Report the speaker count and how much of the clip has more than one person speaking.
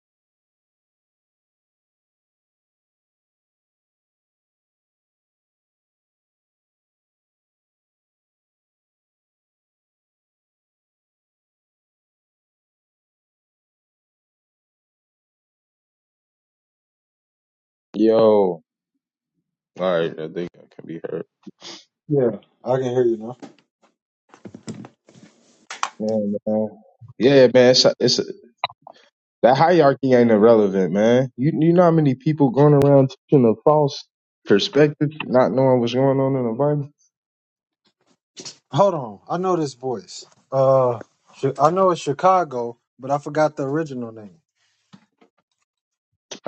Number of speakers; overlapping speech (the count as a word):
two, no overlap